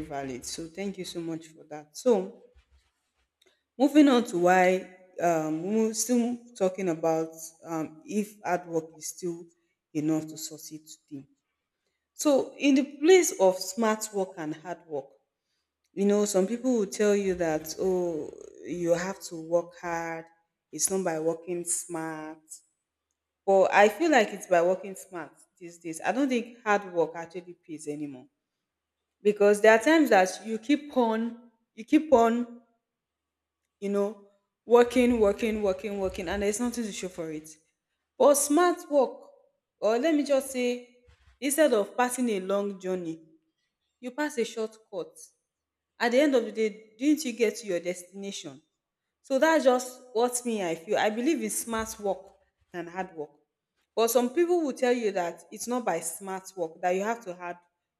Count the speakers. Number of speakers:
1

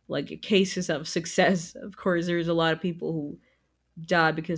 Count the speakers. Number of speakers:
1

